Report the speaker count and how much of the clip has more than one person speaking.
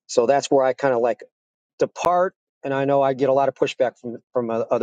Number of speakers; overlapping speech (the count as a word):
one, no overlap